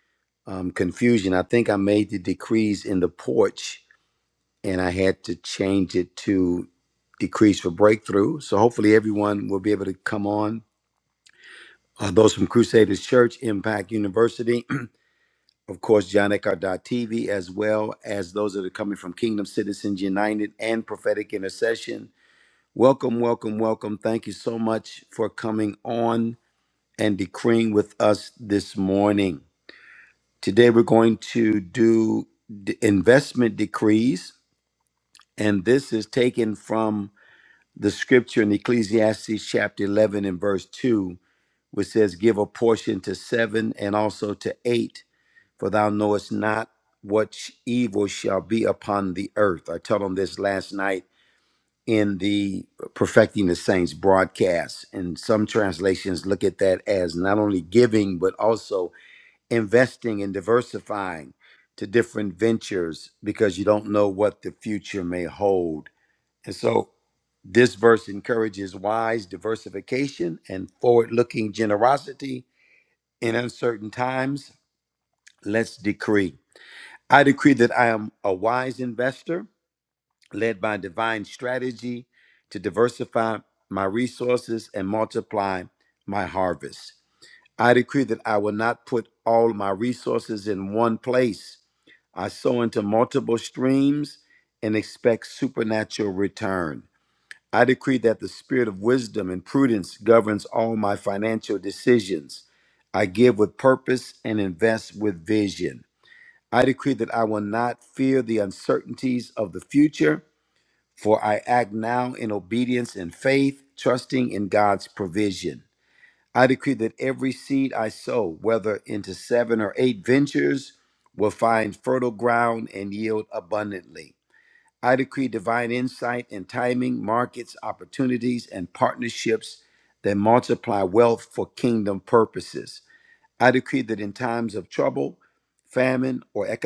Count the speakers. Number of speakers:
1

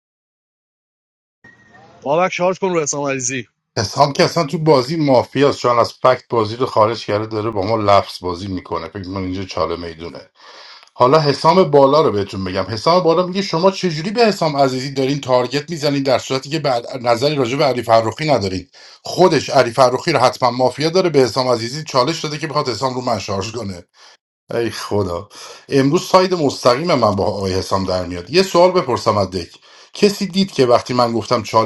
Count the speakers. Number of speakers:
2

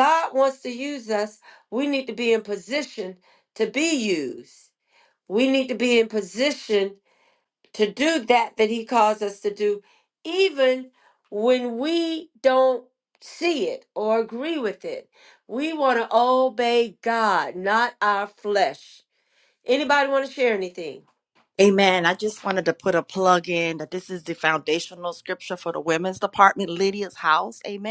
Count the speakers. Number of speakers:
2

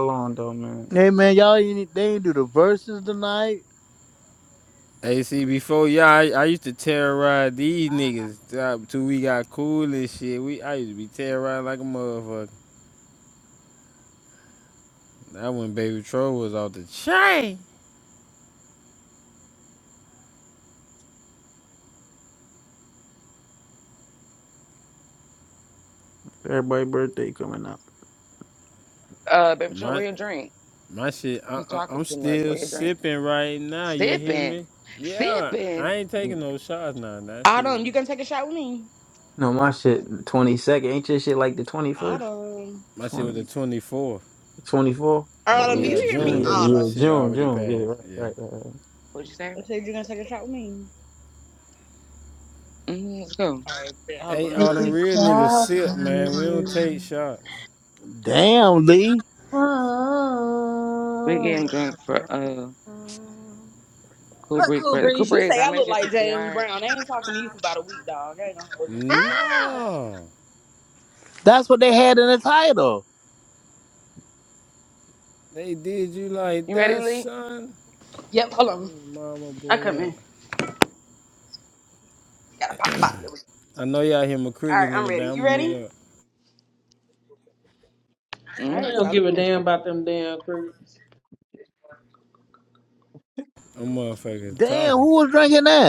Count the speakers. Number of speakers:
6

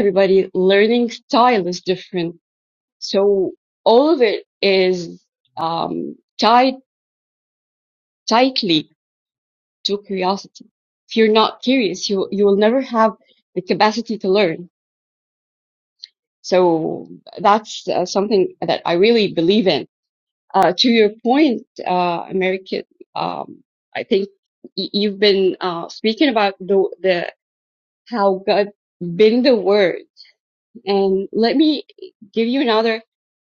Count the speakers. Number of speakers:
1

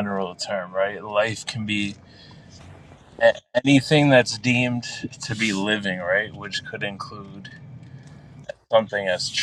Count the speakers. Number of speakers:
1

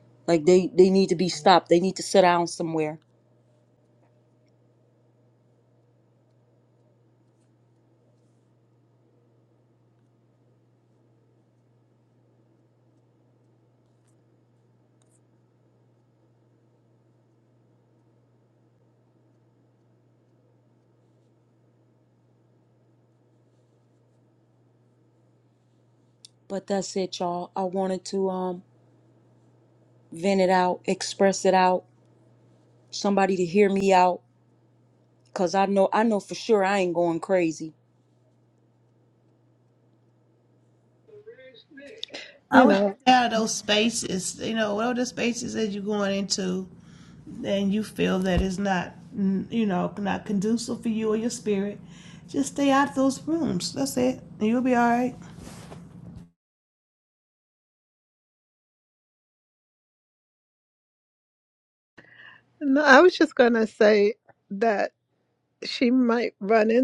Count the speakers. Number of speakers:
3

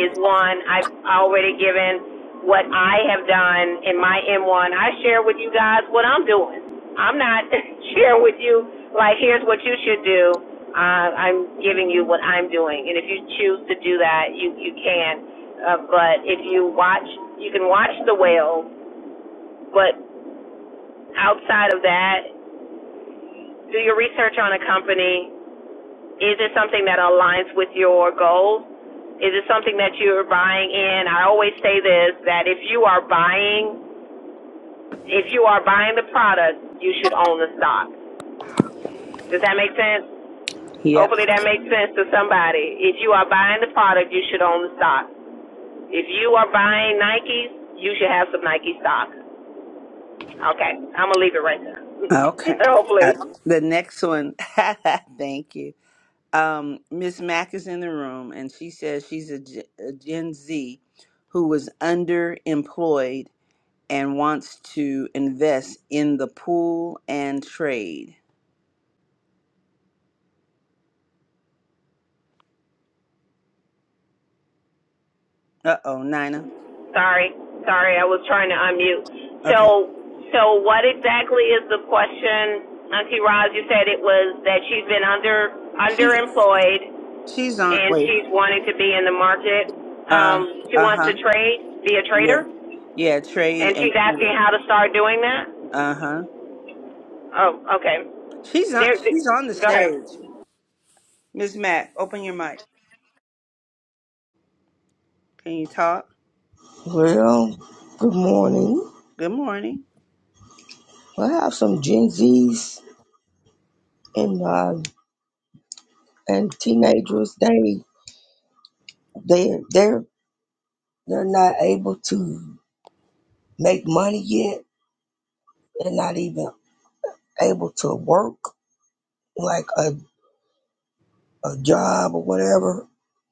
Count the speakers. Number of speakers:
3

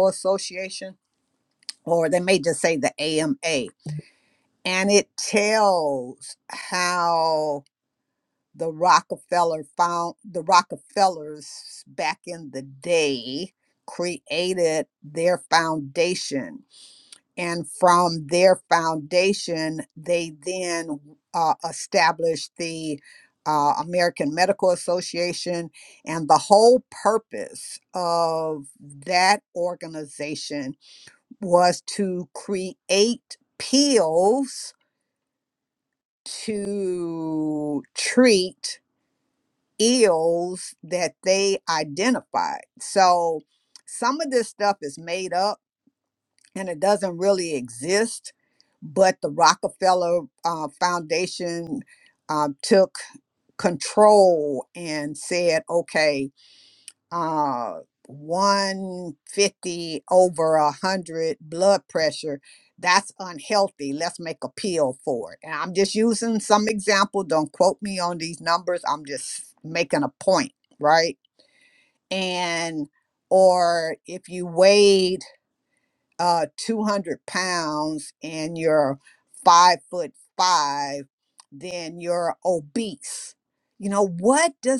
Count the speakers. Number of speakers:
1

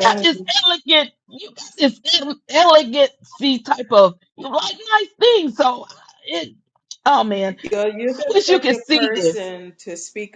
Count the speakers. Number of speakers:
2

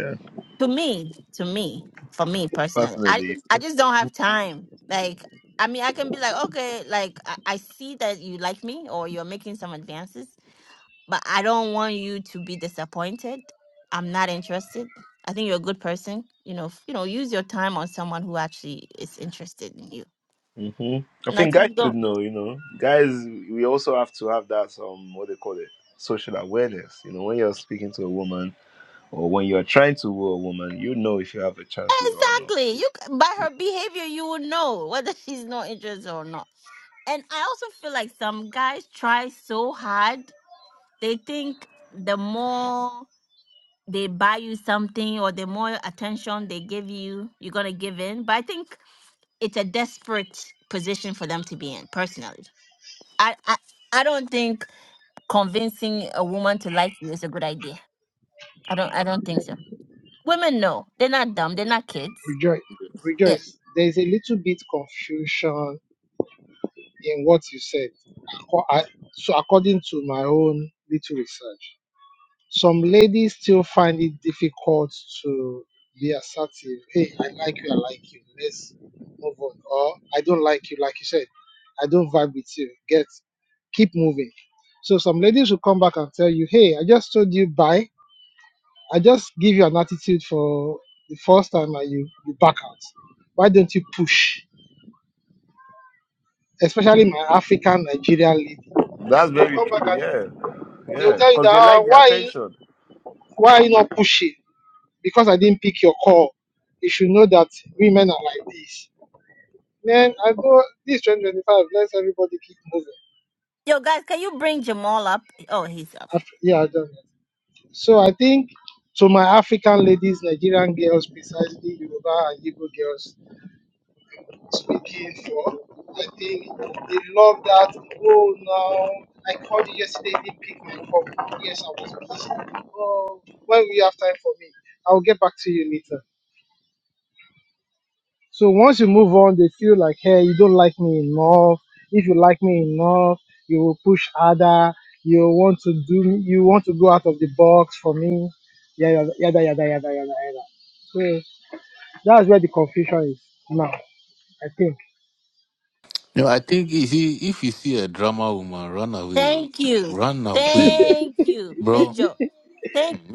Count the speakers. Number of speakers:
4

